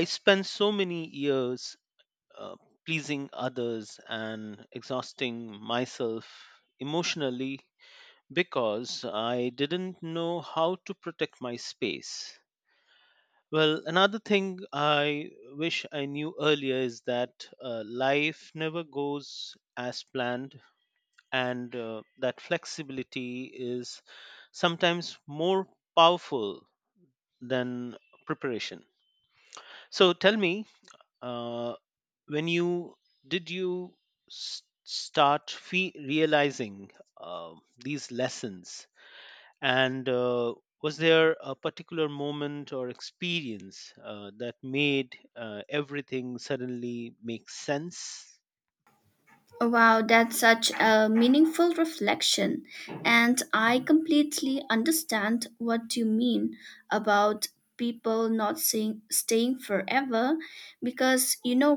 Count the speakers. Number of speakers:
2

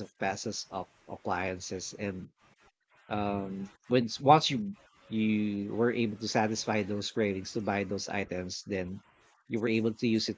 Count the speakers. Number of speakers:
1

